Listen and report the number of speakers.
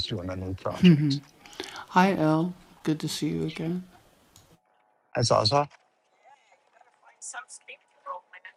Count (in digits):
2